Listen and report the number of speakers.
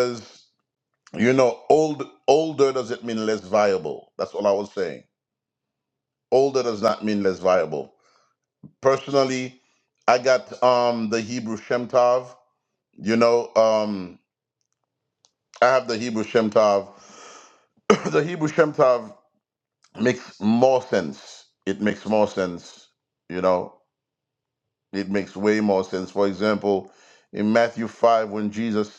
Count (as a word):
one